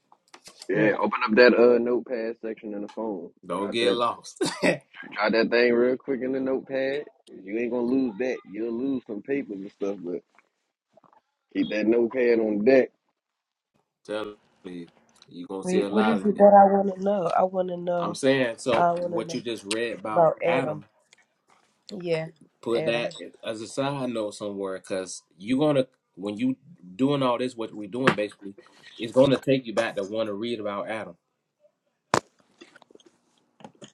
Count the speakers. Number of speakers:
3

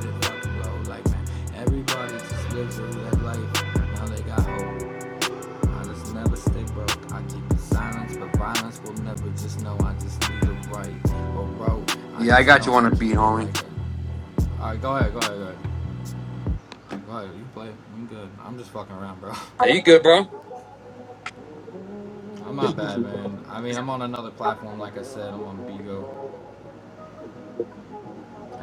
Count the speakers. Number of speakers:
2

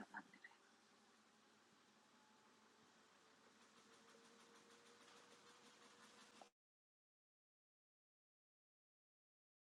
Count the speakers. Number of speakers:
0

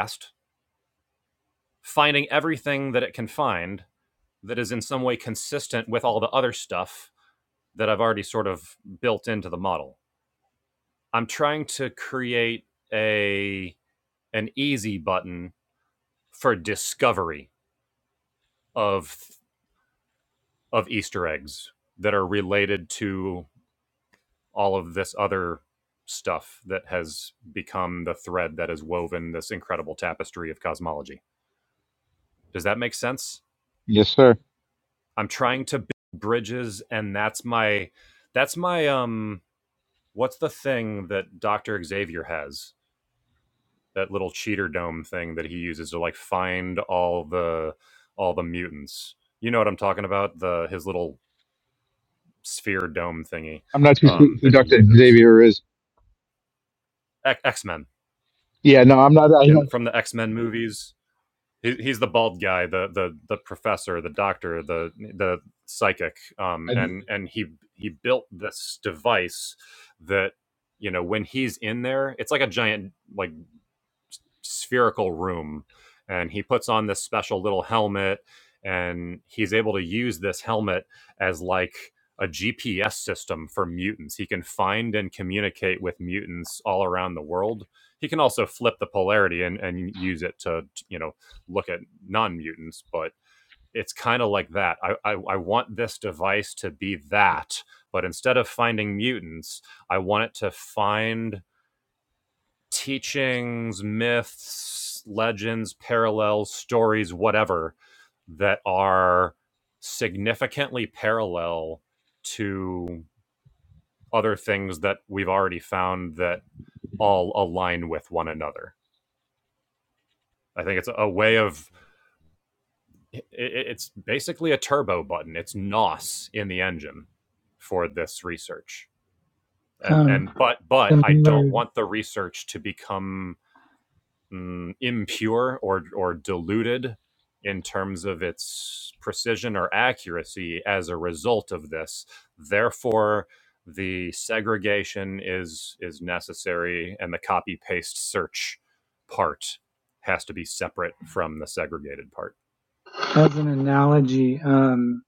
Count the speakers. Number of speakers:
3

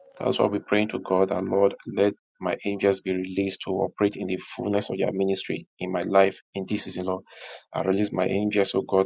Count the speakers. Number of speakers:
1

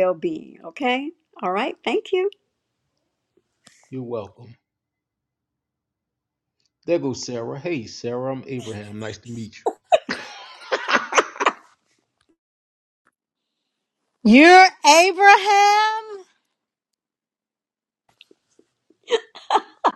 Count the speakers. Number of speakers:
3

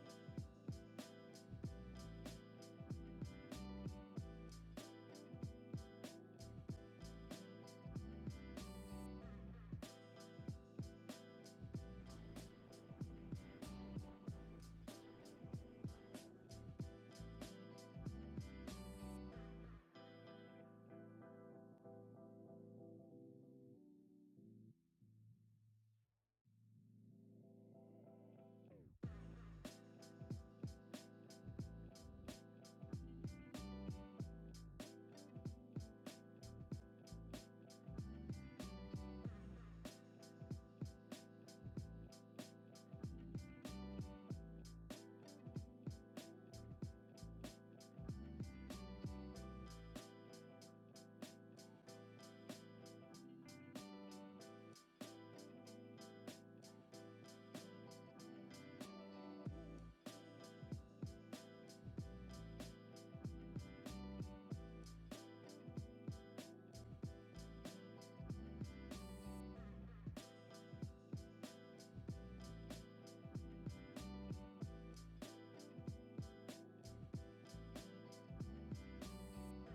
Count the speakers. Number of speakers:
0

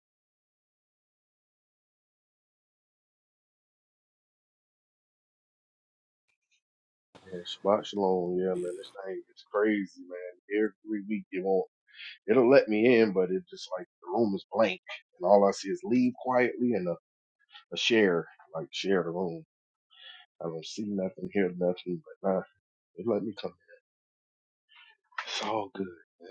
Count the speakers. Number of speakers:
1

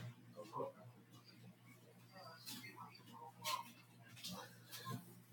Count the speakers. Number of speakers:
0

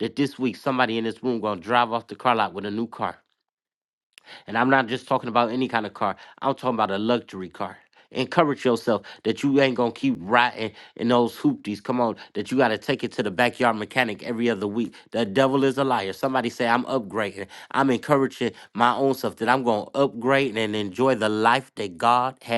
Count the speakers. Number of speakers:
1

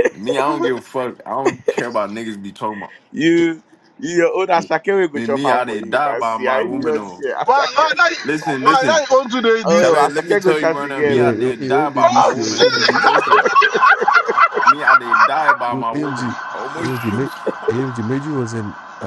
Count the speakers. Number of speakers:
4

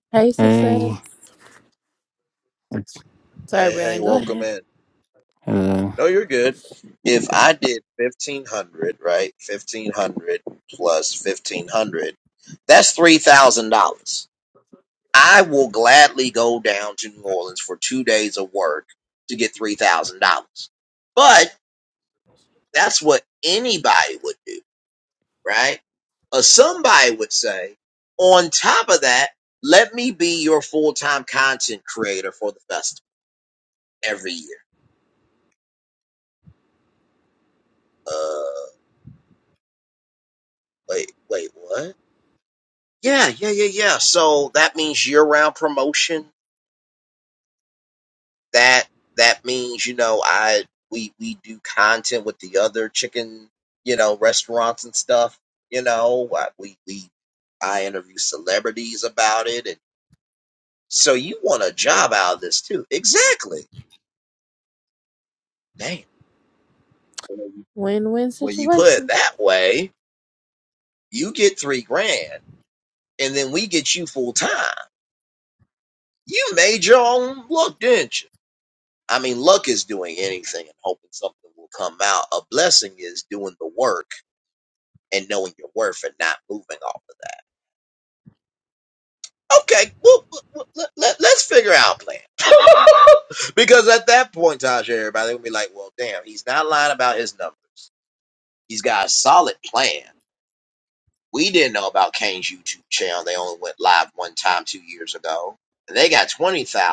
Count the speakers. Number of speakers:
3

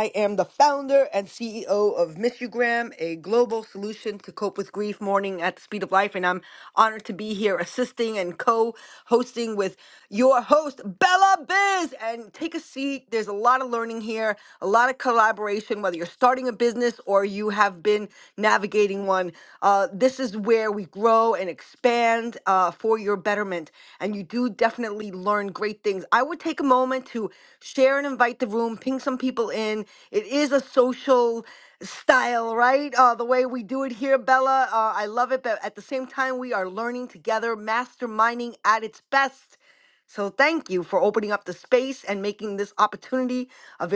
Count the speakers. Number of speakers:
1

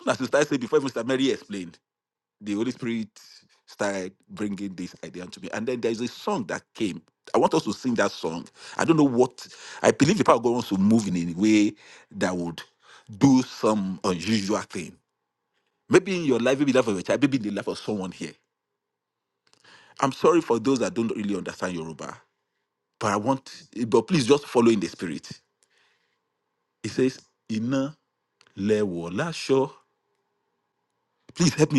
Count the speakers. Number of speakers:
1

